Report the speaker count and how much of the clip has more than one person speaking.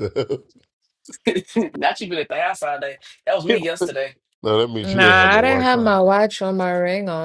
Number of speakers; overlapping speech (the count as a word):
three, about 17%